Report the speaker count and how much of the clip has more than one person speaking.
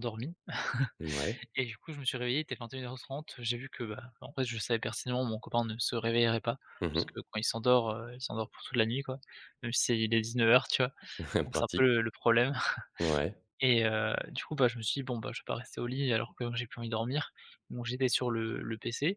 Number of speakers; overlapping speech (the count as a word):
two, about 3%